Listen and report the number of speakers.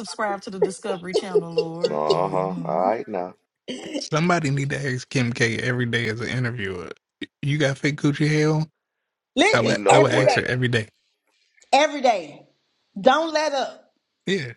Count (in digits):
4